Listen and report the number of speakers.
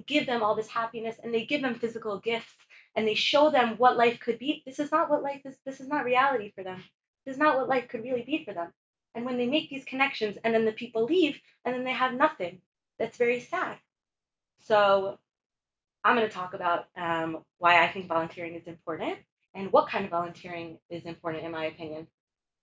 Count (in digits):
1